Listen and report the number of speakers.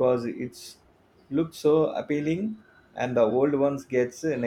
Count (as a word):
one